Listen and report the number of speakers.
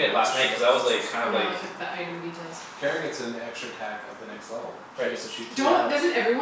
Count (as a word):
three